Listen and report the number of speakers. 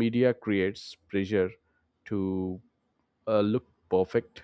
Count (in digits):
1